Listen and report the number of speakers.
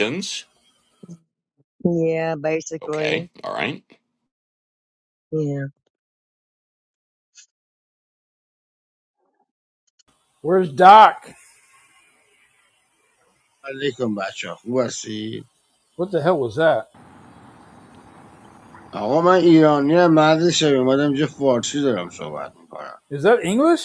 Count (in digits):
4